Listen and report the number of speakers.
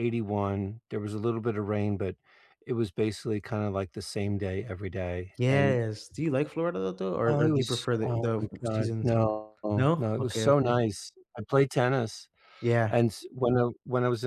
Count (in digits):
2